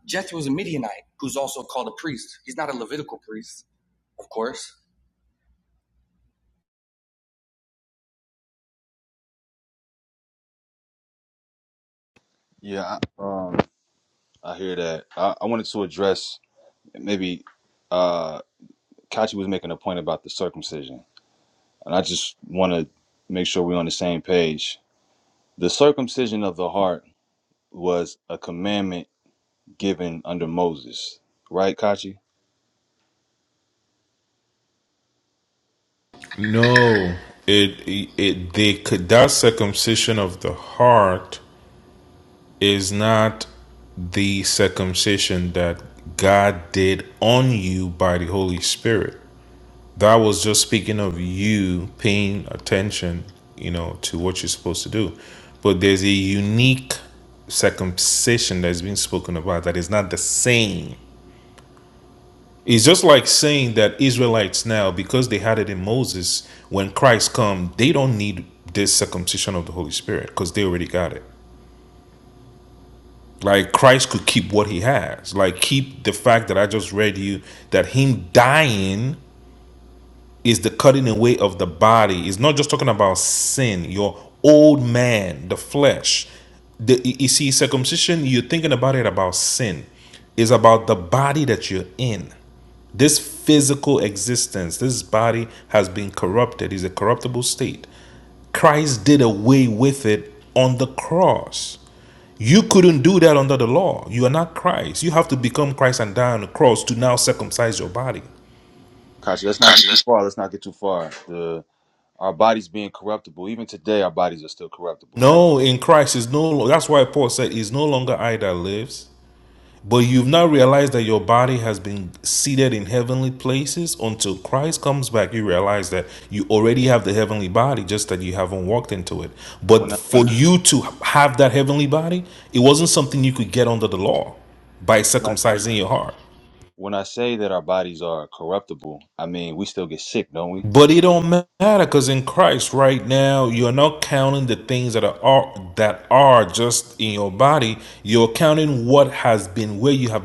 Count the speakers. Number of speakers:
3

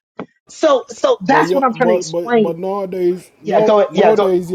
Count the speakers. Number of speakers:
2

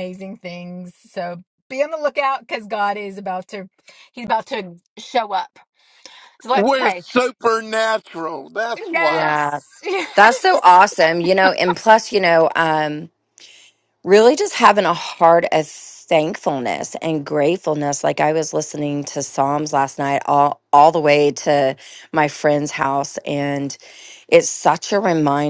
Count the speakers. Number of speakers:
3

